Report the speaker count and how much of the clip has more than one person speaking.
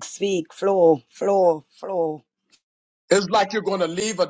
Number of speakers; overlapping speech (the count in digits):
2, no overlap